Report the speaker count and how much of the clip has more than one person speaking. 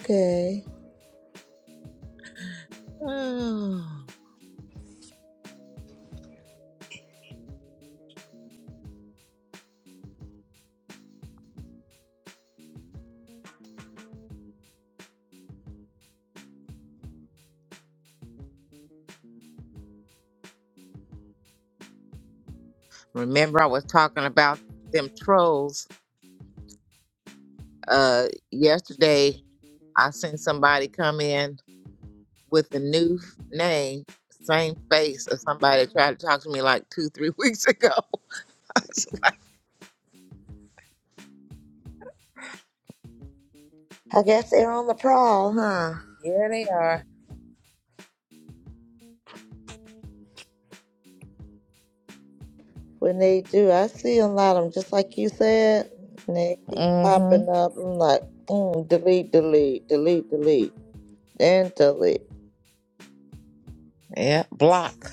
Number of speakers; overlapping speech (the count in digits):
2, about 1%